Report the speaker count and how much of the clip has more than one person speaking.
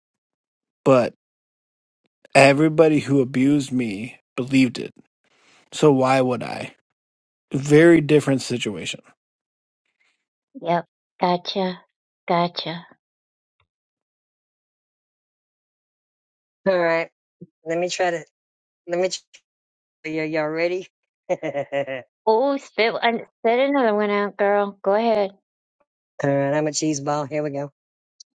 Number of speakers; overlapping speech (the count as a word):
three, no overlap